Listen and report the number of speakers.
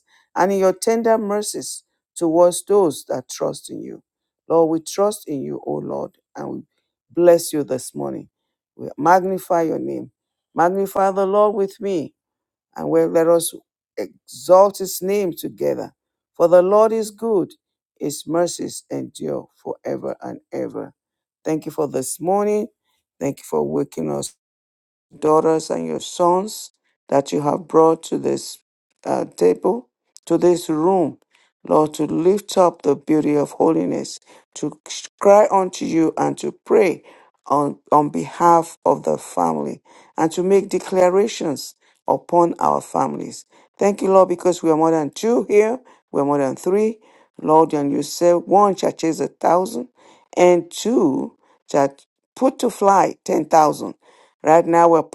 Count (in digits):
1